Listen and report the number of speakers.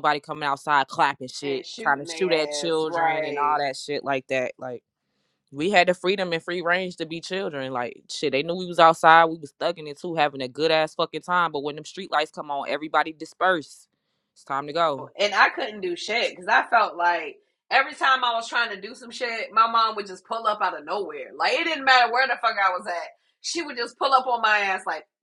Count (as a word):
two